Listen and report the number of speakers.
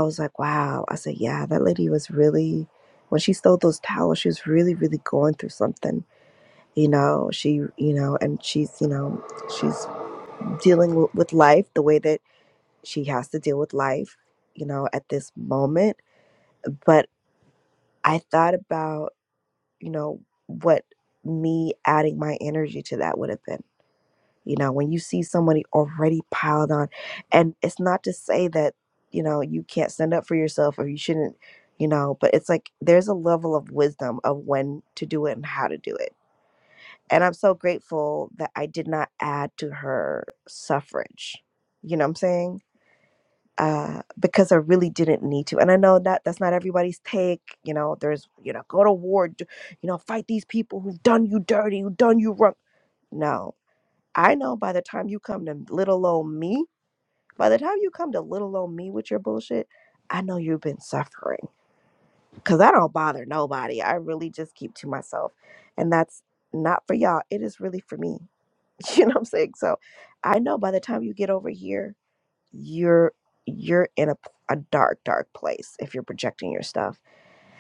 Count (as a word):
one